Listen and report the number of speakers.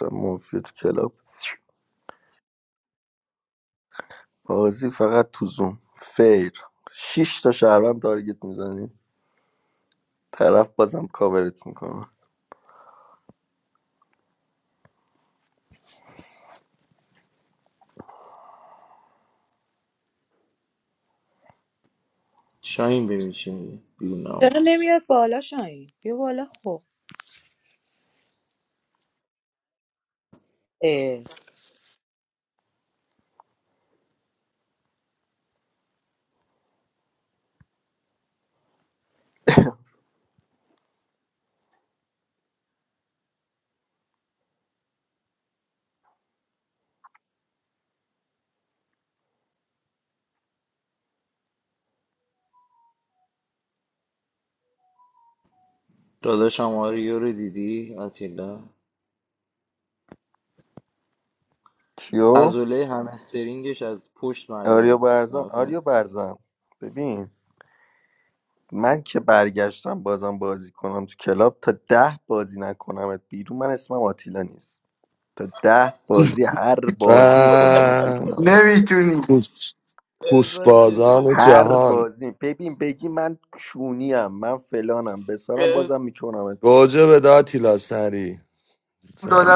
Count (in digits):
5